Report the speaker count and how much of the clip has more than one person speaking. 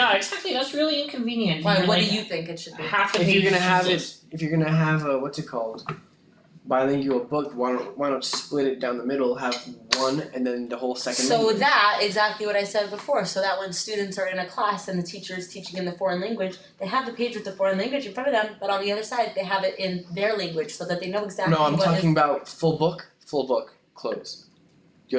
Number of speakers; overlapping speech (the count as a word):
three, about 12%